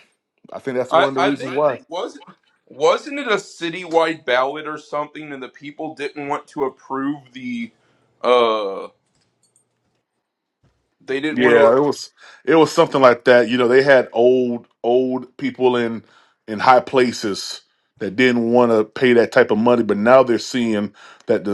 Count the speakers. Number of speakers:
two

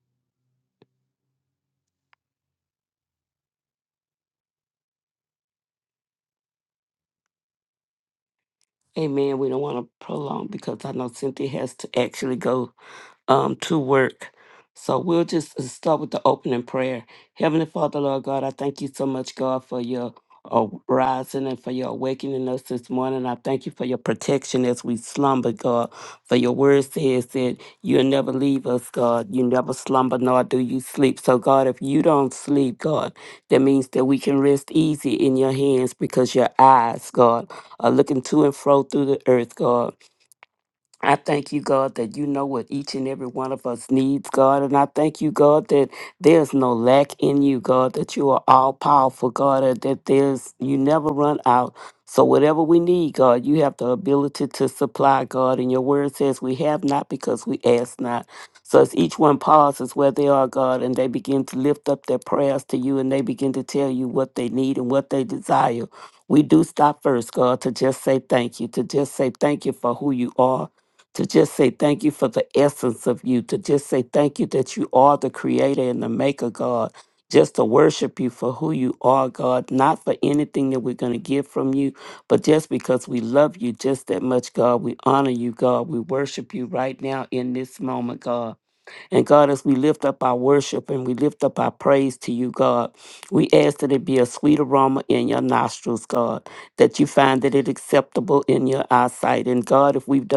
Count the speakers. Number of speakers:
one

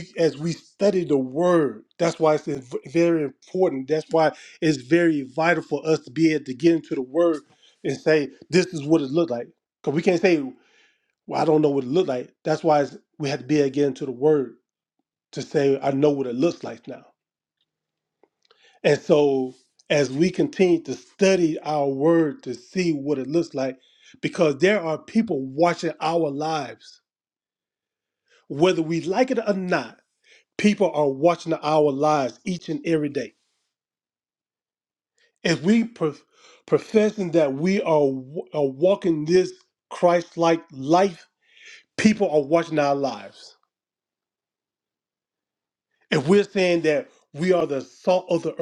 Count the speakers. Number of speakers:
one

